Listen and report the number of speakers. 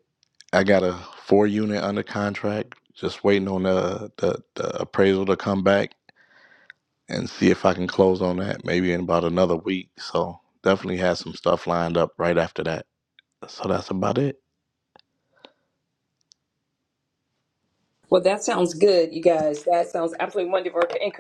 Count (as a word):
two